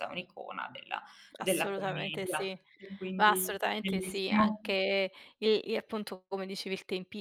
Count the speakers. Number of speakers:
2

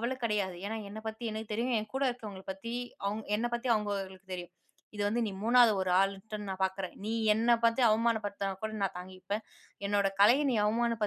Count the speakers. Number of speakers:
1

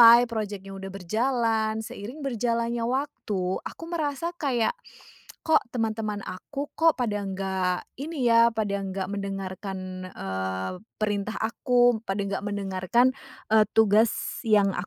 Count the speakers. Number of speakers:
1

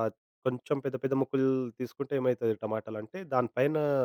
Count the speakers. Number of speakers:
1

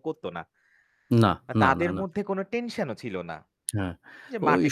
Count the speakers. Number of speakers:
2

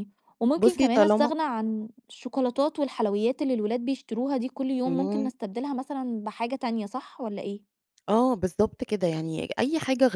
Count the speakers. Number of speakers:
2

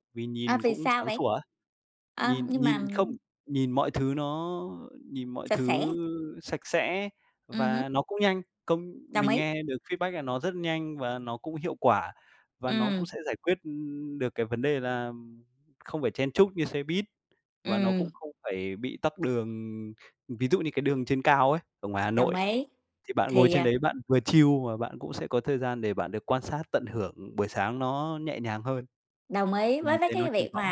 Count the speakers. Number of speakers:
2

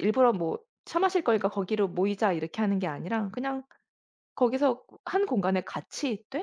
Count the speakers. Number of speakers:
1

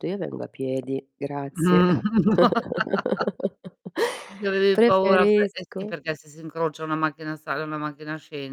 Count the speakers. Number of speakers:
2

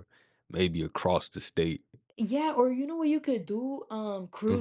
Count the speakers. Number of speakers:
2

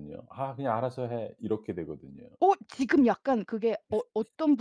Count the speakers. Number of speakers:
2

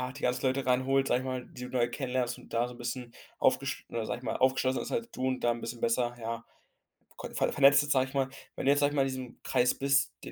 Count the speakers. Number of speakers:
1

